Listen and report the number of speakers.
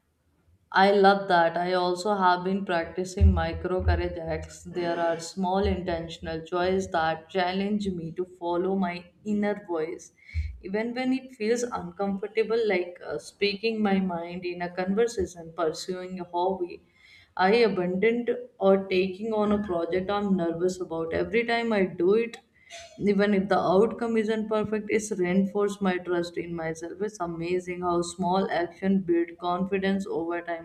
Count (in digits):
1